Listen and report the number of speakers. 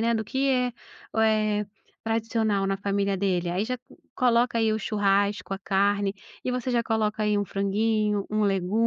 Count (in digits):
1